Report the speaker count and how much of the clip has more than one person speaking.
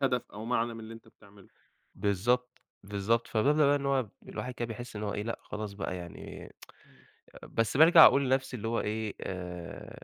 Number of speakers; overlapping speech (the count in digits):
2, no overlap